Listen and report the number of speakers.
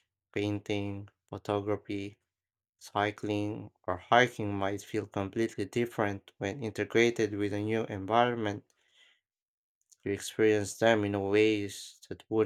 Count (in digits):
1